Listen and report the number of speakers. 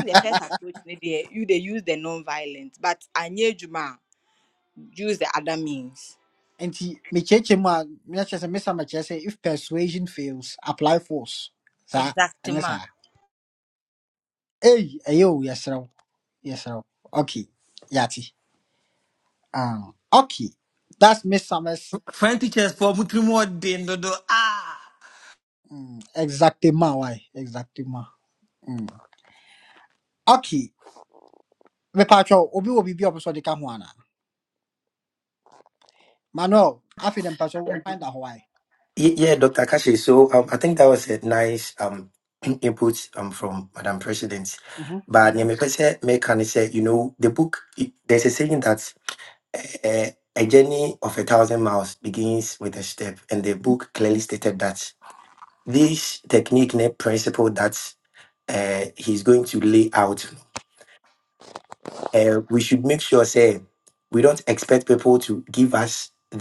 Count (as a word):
four